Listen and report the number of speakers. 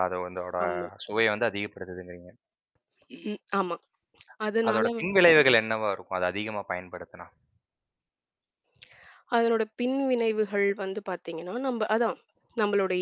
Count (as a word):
two